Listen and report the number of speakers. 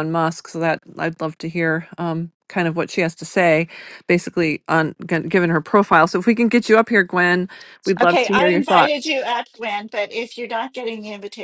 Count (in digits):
2